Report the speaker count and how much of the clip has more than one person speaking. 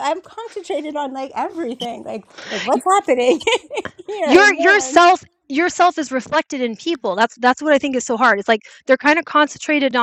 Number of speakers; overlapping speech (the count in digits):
2, about 7%